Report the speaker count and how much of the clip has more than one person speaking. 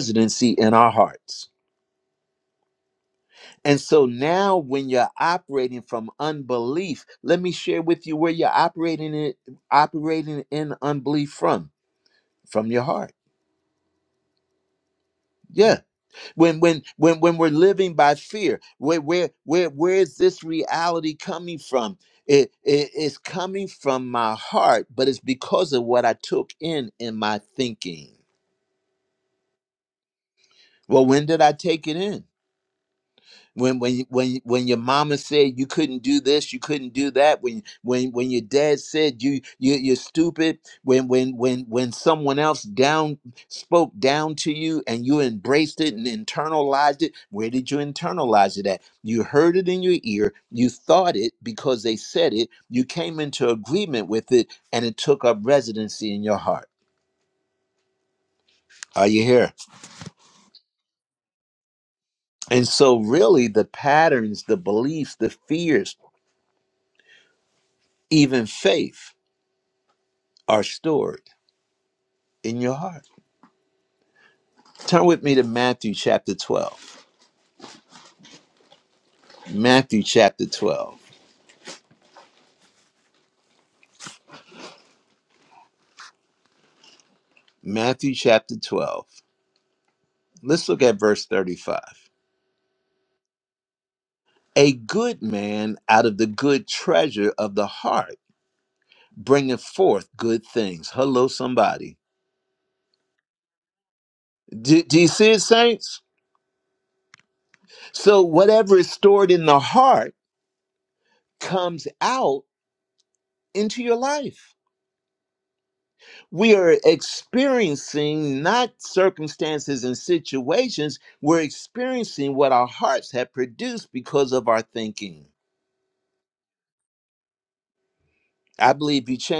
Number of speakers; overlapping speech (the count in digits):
1, no overlap